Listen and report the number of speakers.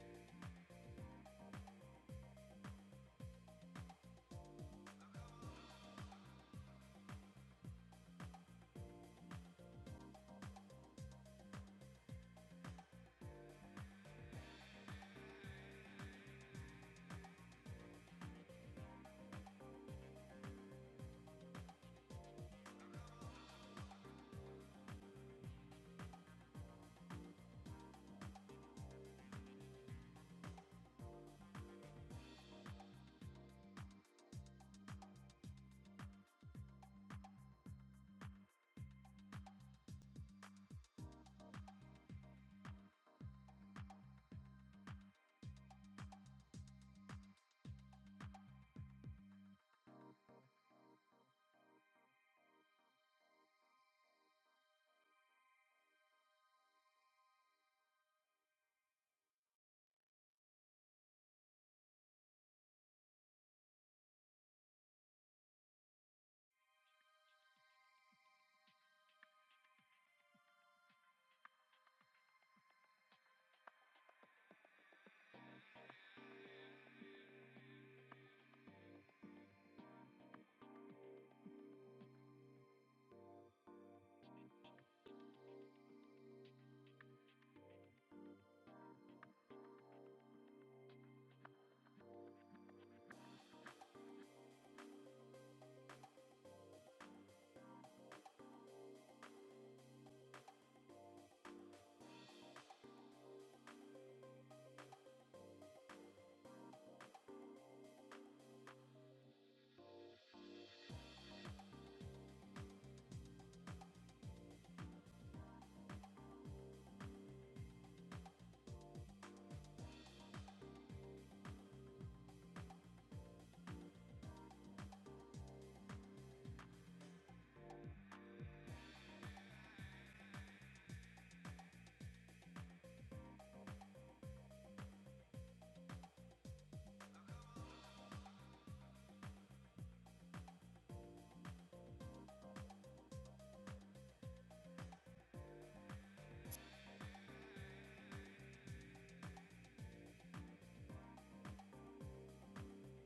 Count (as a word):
zero